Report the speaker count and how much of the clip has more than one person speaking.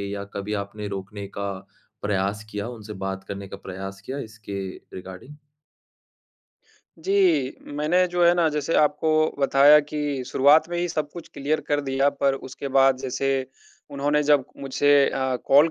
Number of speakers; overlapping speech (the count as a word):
two, no overlap